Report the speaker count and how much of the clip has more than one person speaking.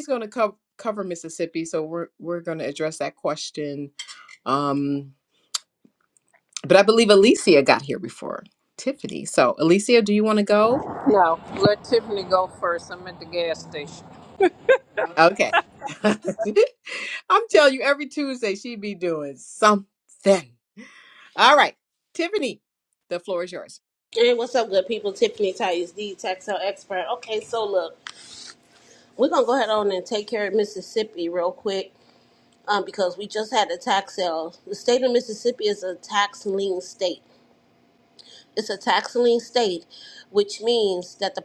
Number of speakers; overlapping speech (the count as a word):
three, no overlap